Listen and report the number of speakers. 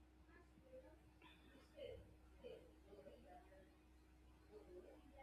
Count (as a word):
zero